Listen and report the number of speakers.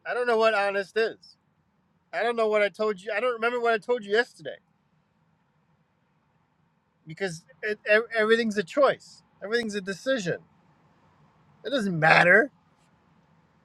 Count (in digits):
1